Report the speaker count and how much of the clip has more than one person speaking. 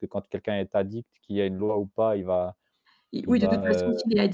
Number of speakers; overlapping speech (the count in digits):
2, about 16%